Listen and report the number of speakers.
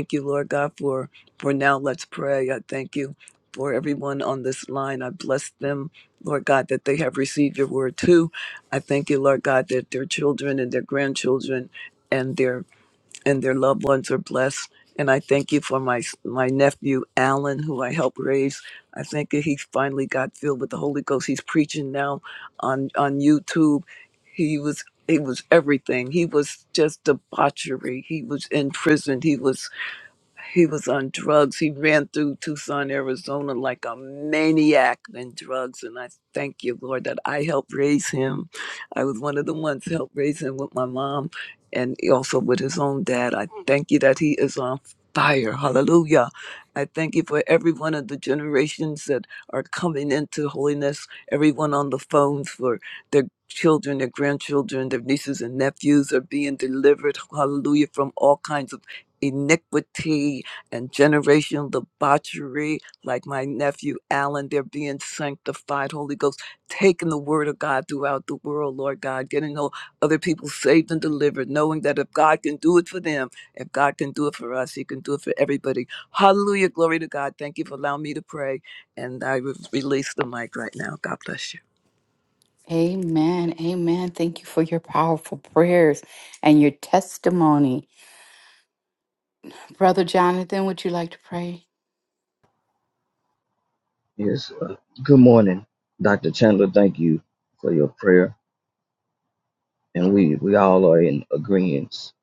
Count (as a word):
three